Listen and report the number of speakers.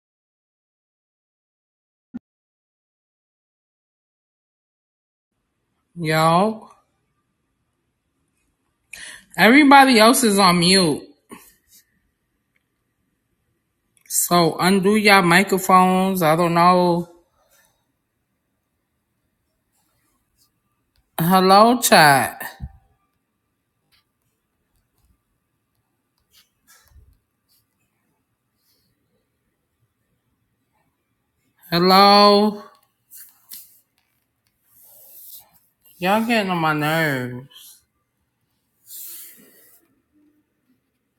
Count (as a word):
one